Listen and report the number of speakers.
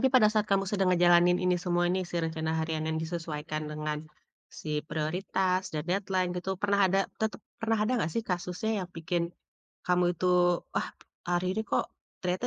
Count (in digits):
1